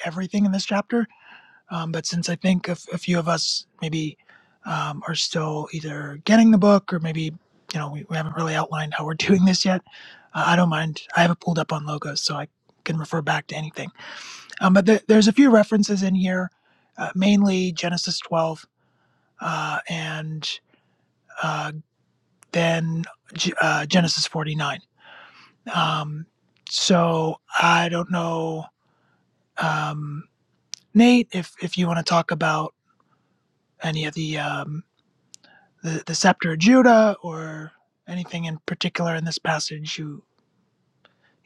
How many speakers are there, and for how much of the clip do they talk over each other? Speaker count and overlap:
1, no overlap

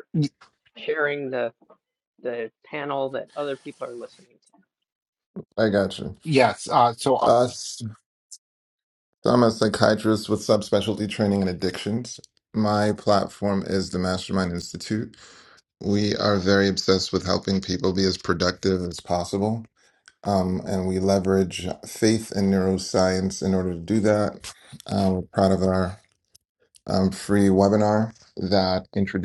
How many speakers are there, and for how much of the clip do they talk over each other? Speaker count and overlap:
3, under 1%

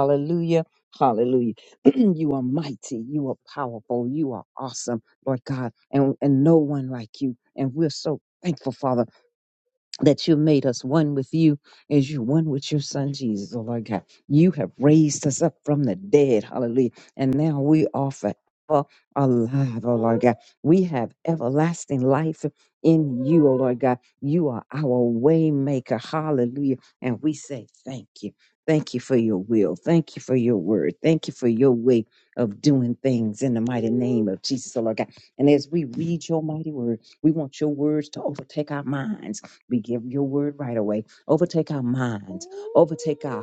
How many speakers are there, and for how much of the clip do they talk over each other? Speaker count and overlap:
1, no overlap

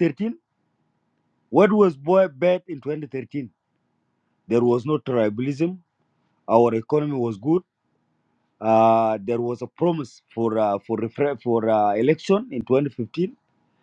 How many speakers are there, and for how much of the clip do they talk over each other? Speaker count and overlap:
1, no overlap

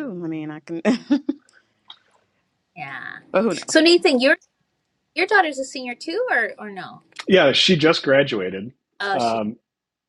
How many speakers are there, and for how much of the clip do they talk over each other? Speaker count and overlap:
3, about 5%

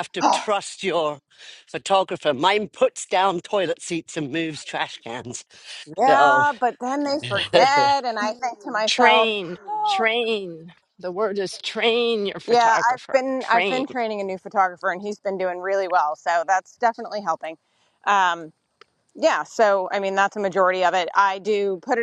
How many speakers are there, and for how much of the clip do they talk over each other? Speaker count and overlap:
3, about 14%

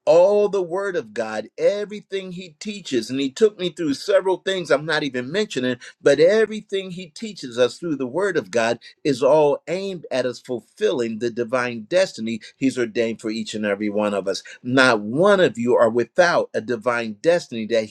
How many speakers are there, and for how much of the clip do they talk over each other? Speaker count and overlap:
1, no overlap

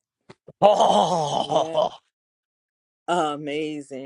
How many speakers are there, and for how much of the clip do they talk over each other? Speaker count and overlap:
2, about 5%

